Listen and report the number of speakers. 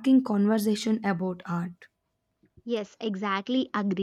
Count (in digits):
2